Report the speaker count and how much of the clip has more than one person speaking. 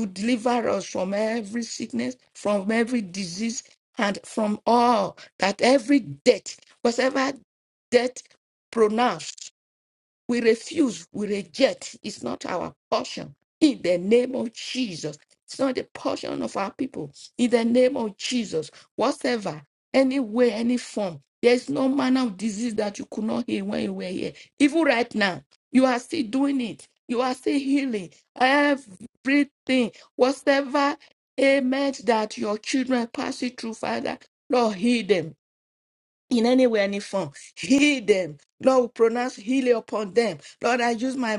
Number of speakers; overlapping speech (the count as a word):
one, no overlap